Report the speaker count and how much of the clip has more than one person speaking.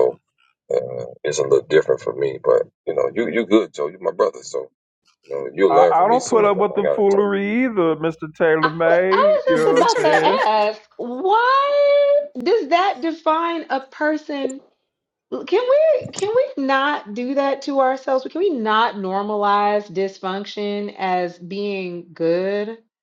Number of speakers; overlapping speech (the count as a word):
three, about 15%